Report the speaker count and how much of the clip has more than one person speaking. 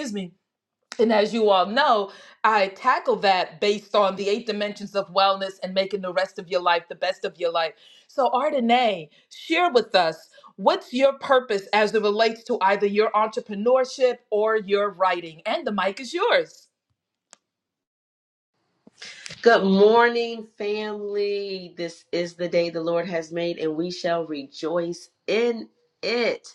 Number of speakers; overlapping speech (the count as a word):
two, no overlap